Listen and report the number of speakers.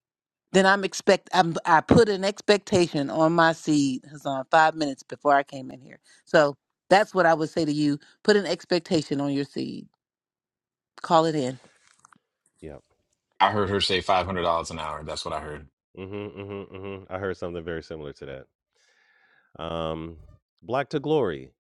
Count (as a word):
three